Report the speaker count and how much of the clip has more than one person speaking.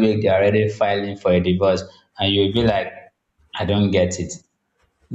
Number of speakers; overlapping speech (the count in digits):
1, no overlap